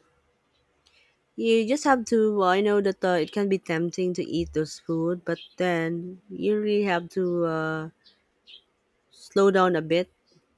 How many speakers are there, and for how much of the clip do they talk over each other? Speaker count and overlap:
one, no overlap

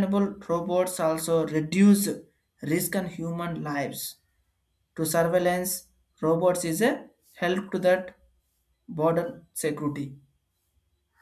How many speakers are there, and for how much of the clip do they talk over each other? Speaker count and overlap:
one, no overlap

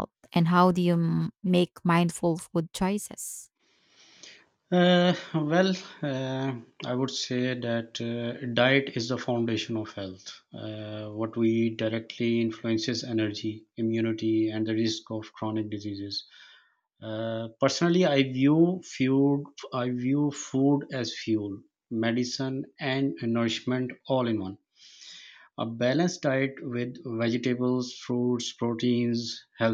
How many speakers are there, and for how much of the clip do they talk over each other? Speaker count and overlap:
two, no overlap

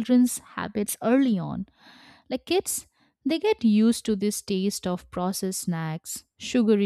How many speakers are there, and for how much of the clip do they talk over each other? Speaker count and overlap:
one, no overlap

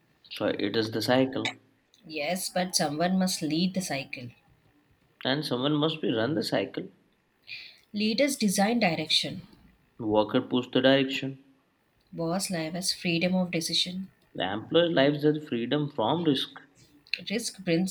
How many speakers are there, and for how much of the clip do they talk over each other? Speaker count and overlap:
two, no overlap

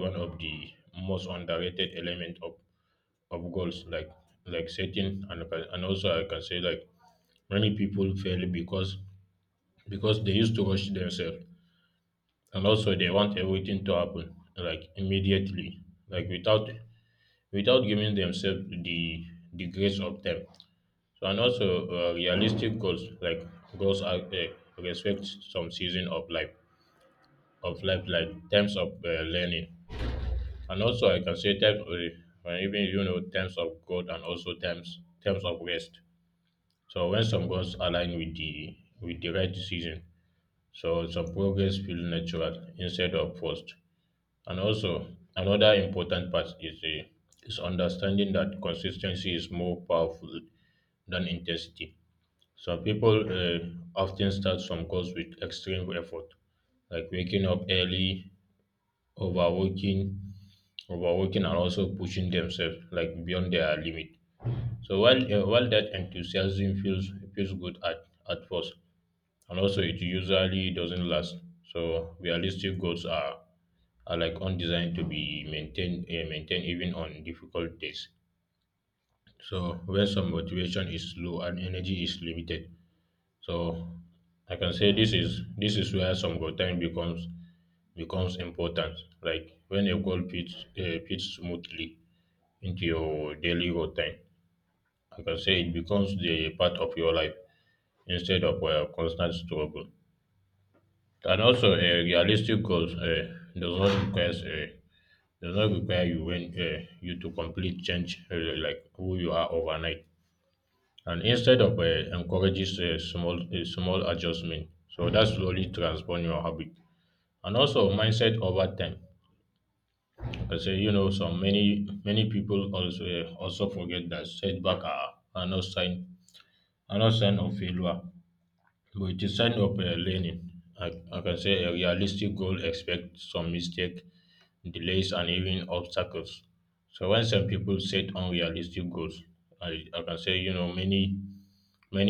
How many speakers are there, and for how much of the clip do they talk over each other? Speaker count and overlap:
one, no overlap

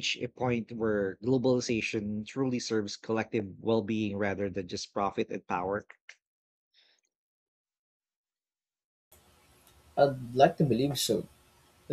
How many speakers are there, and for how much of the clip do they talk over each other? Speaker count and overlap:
two, no overlap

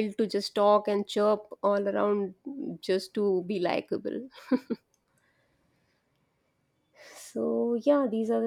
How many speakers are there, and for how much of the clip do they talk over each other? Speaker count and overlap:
one, no overlap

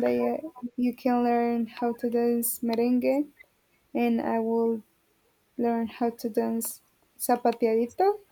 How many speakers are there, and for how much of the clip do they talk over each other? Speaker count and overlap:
one, no overlap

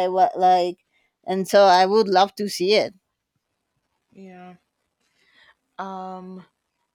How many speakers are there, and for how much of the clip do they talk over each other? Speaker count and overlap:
two, no overlap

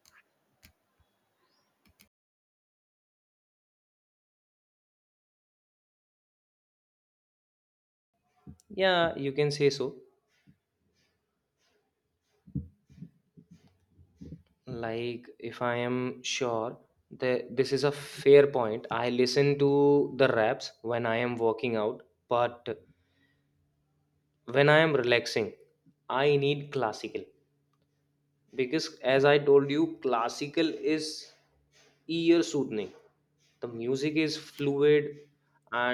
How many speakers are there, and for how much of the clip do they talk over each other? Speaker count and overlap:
one, no overlap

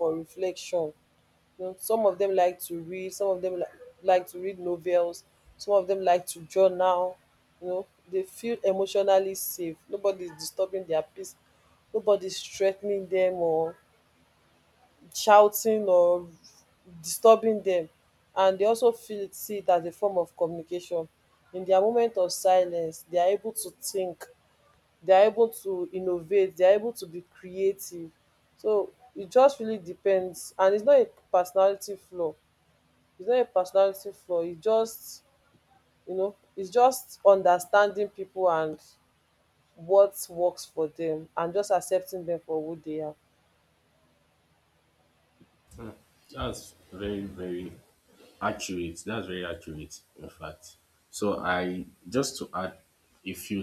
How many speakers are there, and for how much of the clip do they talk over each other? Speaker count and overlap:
two, no overlap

